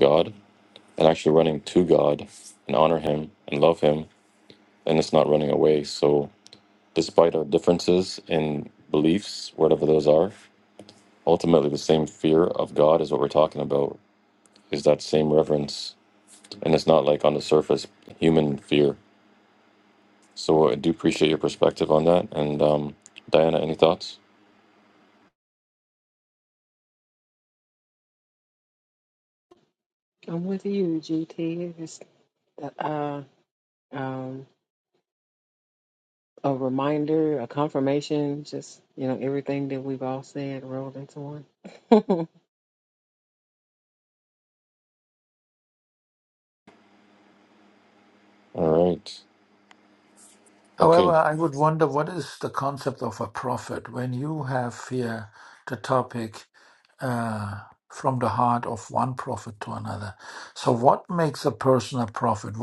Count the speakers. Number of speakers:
3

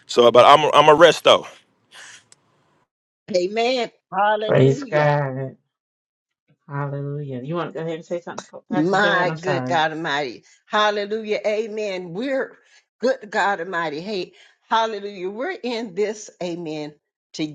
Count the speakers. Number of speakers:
3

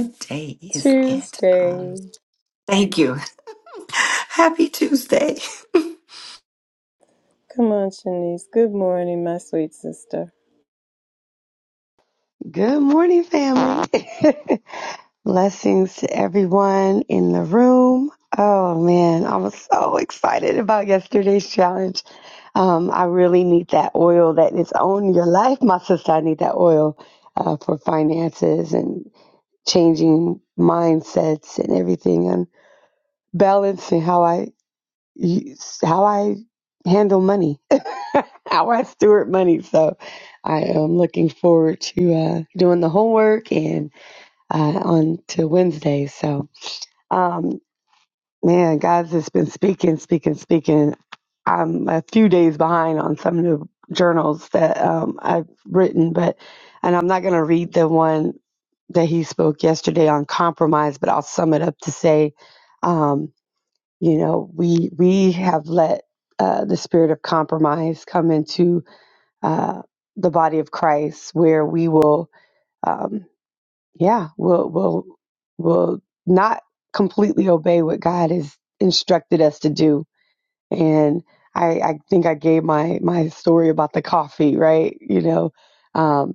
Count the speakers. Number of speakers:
3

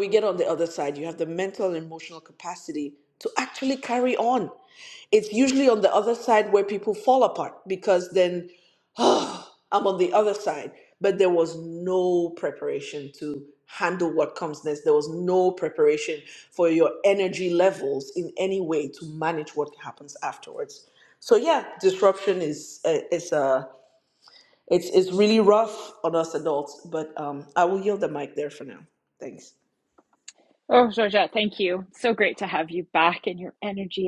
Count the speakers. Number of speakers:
2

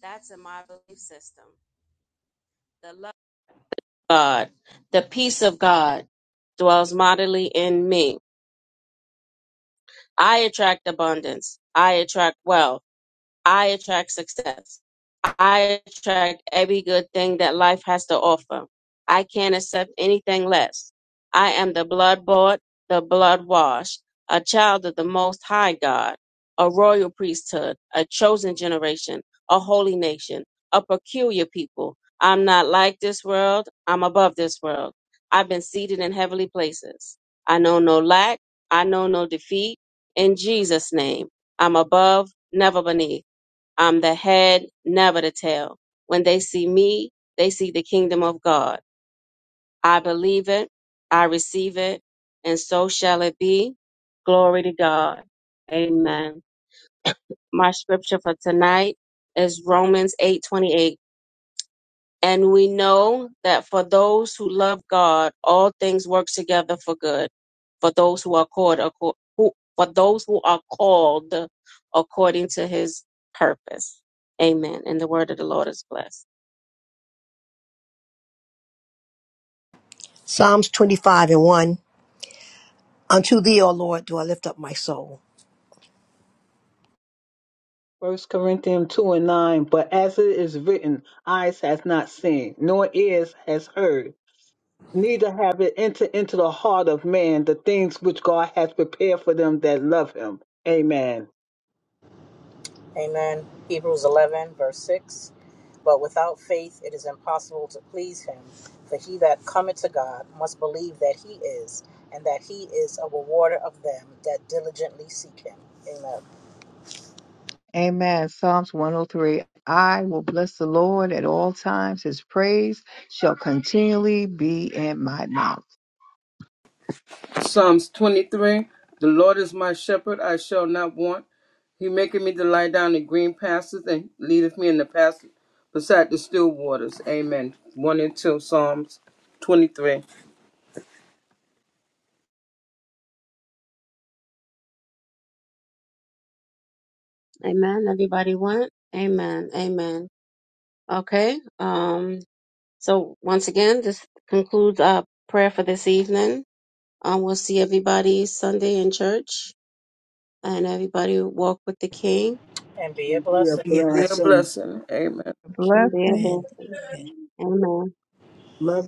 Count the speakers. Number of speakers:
6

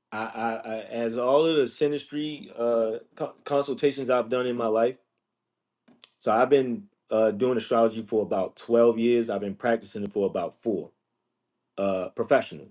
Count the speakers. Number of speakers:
1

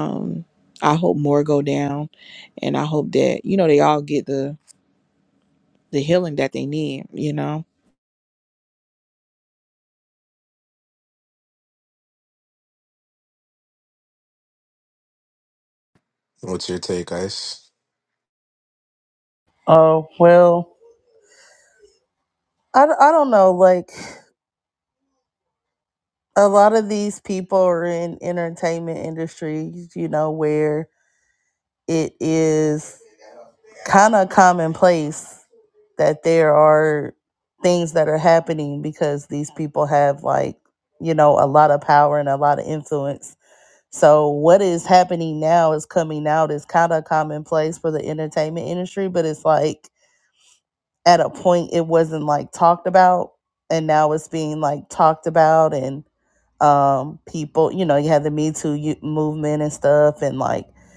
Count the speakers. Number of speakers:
3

